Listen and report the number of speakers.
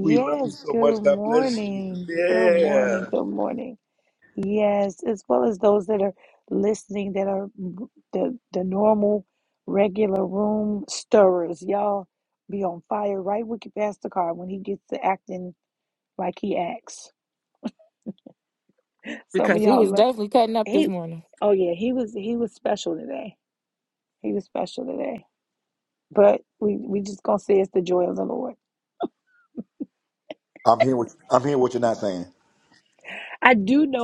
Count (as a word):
three